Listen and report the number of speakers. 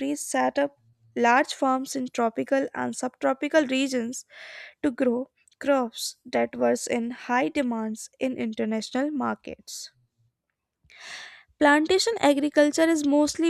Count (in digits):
1